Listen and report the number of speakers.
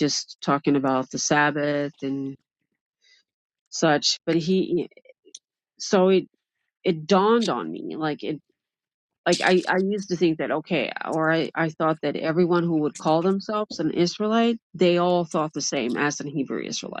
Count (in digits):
1